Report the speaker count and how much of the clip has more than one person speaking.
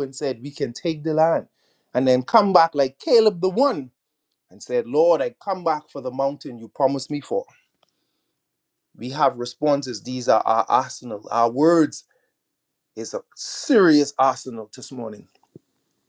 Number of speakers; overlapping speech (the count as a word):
one, no overlap